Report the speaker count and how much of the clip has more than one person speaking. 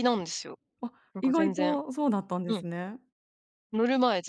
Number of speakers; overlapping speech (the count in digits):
2, about 18%